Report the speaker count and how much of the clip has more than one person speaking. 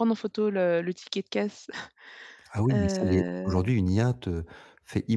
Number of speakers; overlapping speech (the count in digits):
2, about 21%